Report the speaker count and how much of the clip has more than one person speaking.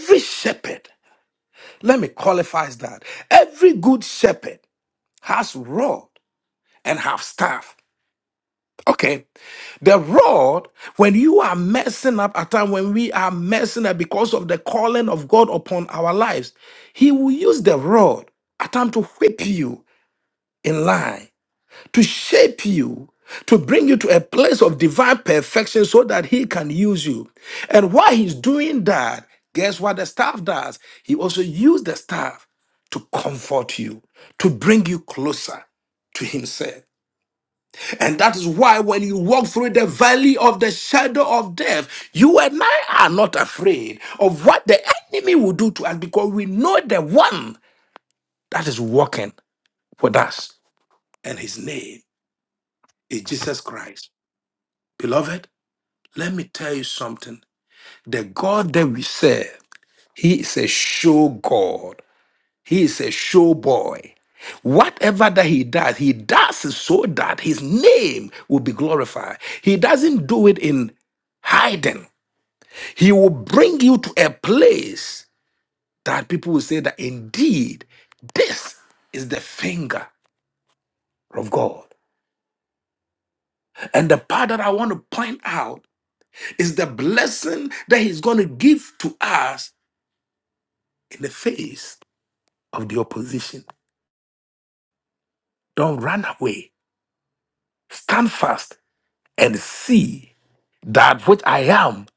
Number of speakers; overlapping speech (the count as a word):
one, no overlap